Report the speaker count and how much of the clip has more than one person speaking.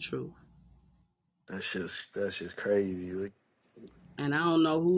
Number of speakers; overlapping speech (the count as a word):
two, no overlap